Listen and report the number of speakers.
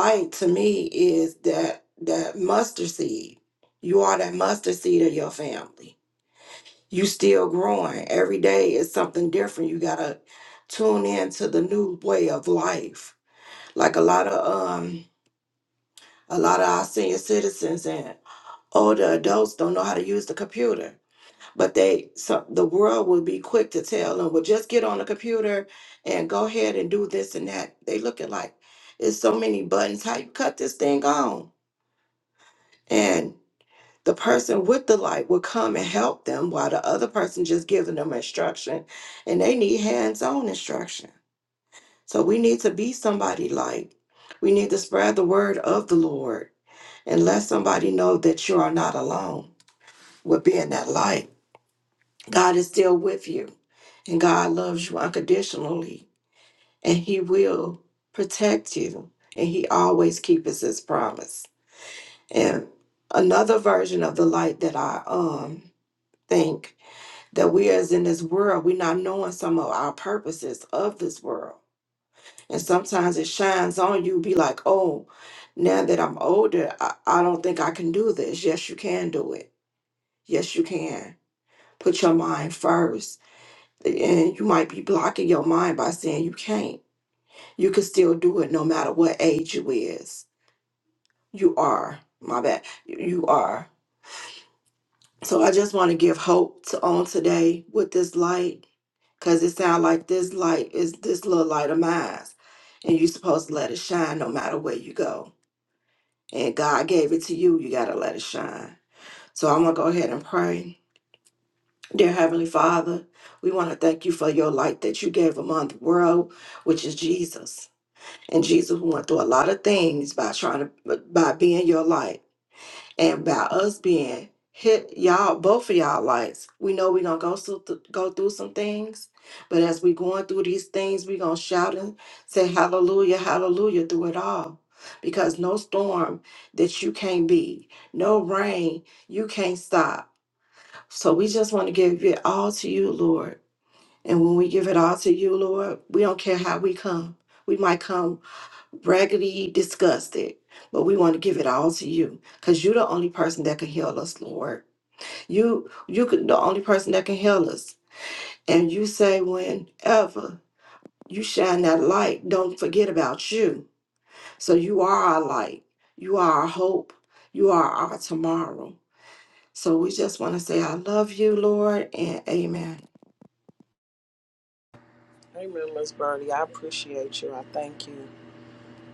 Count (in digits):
2